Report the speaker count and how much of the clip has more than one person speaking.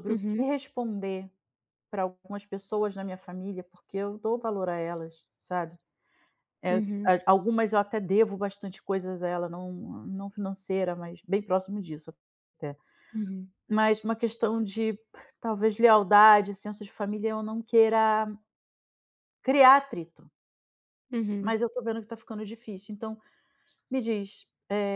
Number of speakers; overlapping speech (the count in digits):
2, about 4%